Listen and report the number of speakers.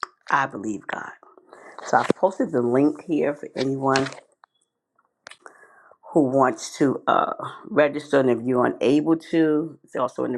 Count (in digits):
1